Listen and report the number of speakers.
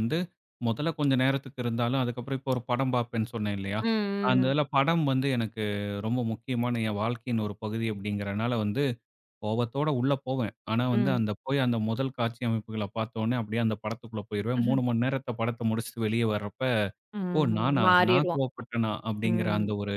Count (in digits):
2